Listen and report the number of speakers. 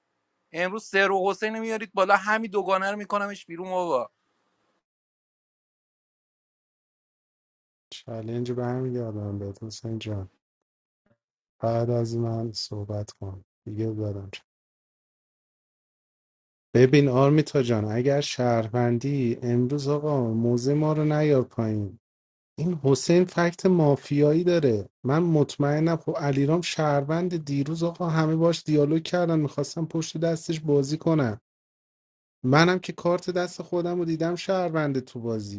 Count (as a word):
two